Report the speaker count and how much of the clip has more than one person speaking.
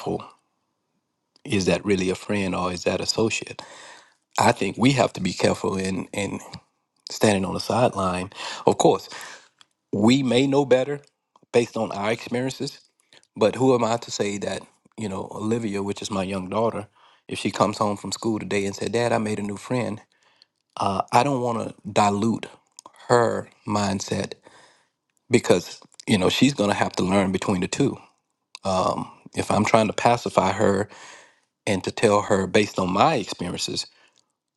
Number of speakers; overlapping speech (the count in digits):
1, no overlap